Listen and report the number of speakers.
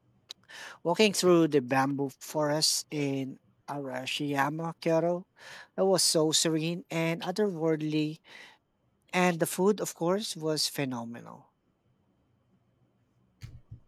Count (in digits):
1